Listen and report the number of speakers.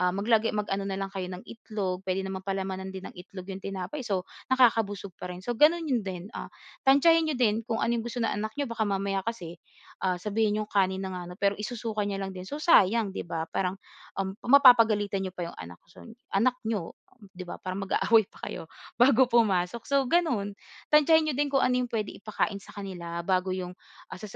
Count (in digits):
1